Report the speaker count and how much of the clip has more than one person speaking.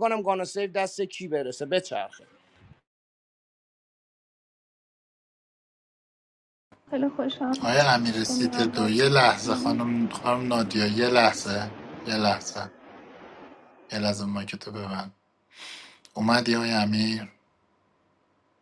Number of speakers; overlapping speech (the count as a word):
three, about 4%